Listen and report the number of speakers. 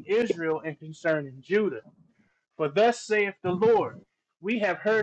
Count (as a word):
one